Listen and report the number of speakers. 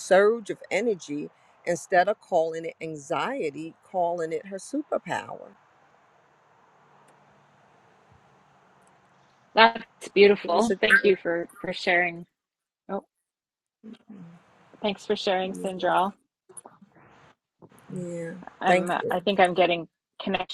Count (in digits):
2